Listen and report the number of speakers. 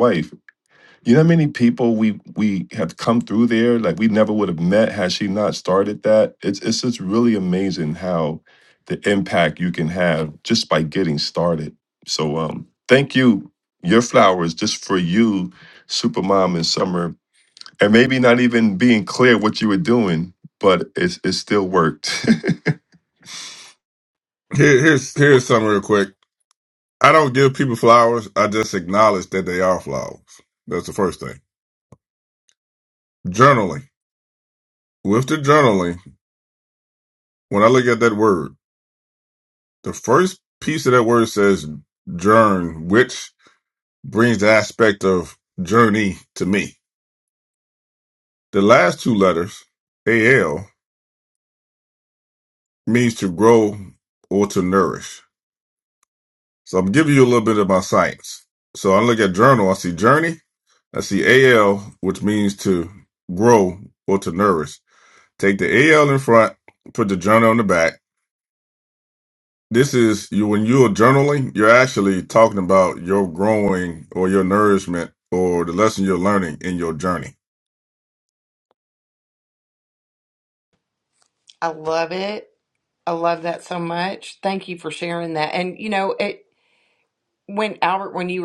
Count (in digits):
3